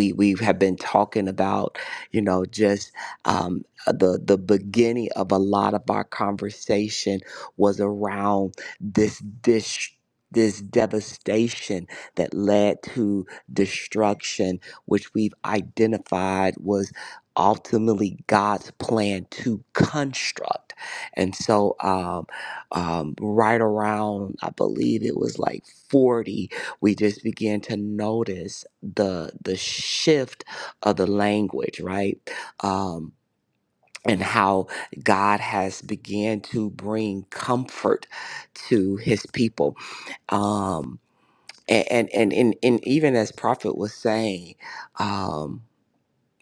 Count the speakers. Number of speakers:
1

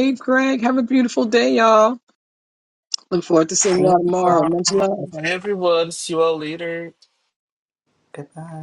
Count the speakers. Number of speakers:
3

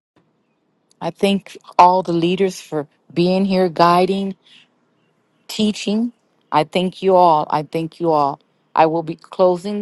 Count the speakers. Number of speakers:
1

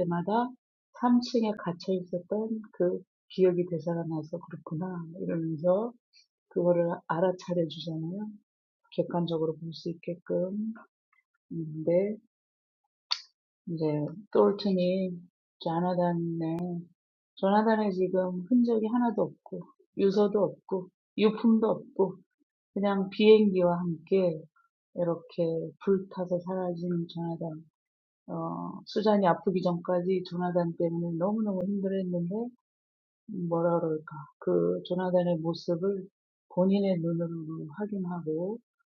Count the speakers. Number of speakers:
1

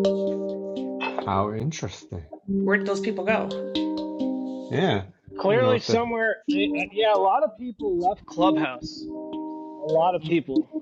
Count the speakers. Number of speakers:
3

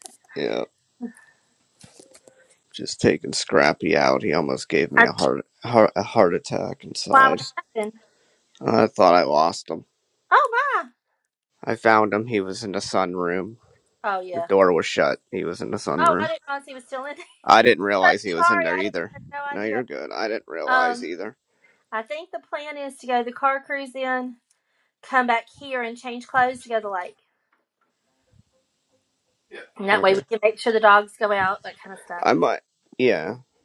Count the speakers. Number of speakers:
2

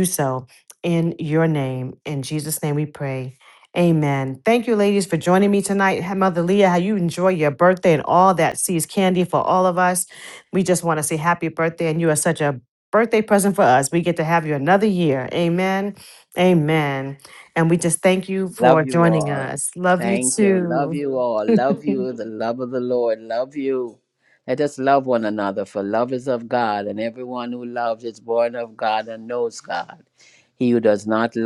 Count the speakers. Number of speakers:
2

